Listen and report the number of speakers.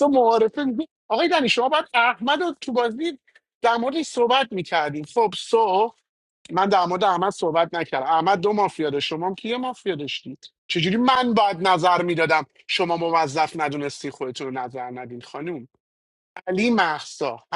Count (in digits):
1